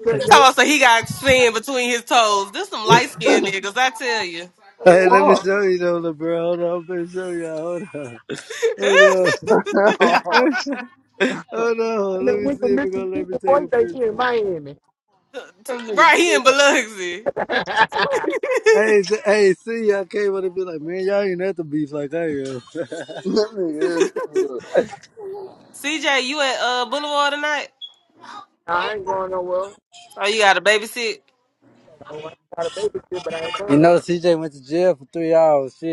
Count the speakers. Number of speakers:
4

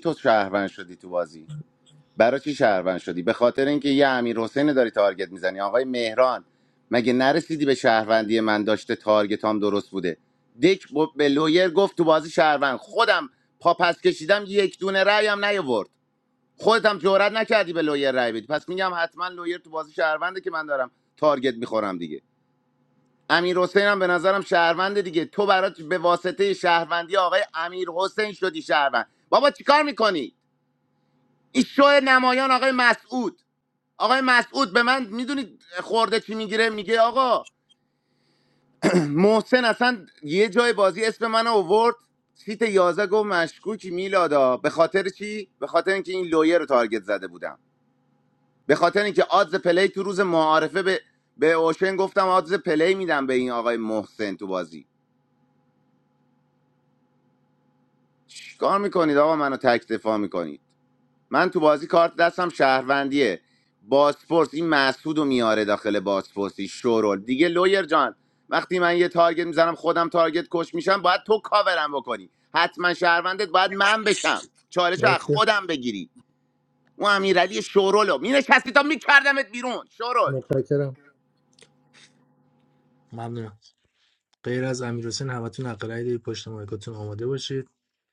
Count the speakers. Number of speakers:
2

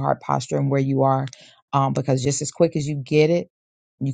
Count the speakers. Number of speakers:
1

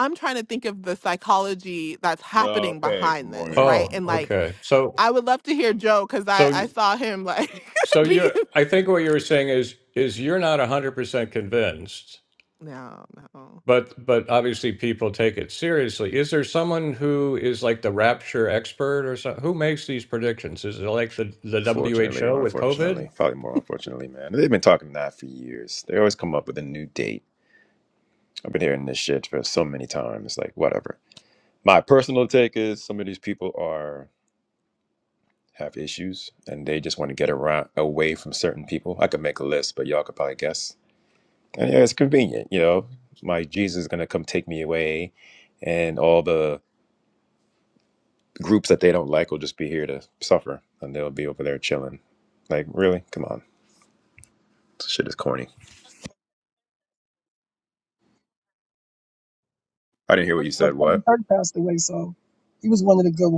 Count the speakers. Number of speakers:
4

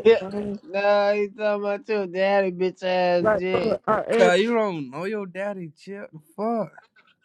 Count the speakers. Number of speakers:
3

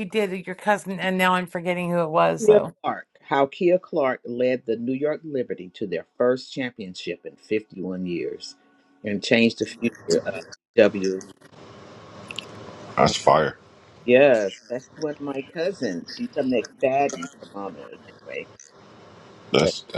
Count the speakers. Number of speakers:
3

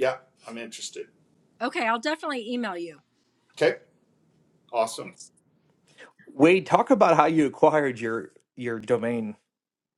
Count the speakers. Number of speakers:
3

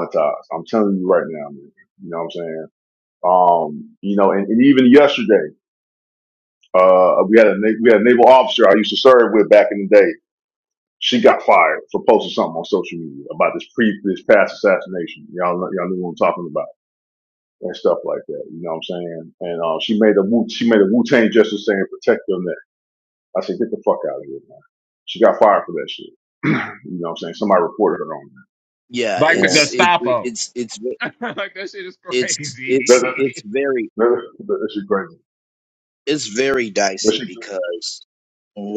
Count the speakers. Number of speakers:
3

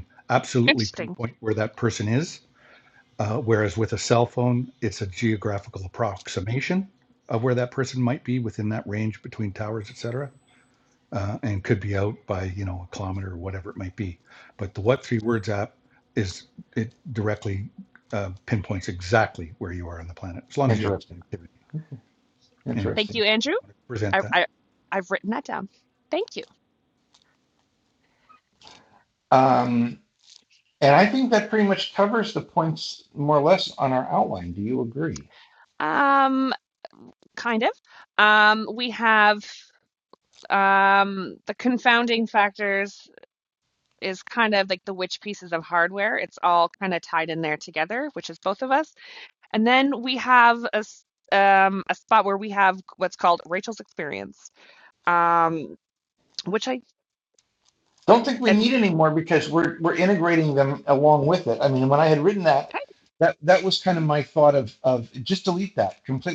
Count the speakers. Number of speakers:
3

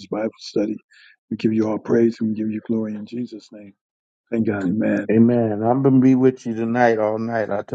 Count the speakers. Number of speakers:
2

